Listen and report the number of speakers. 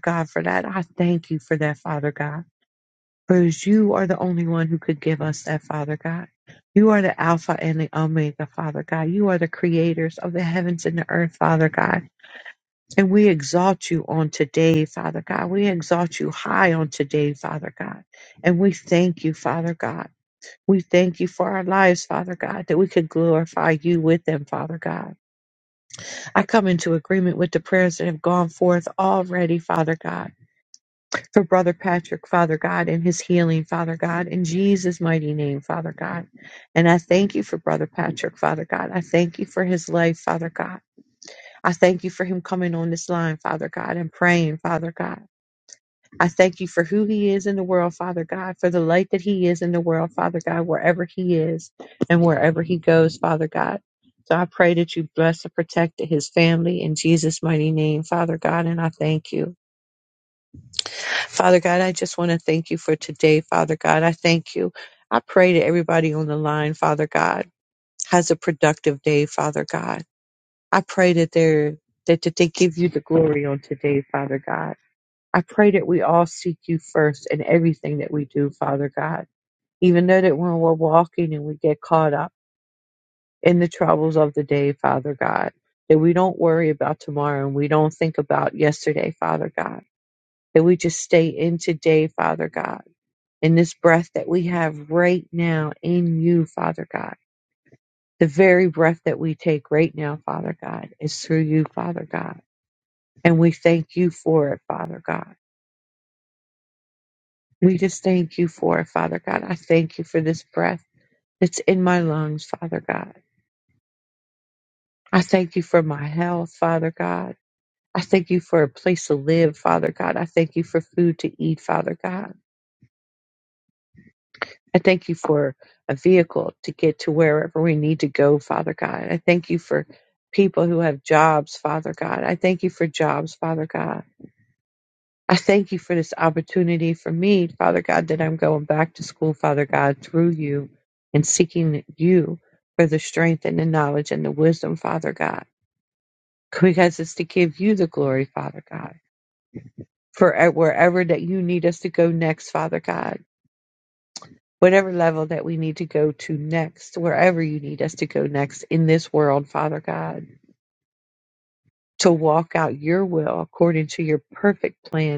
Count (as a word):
one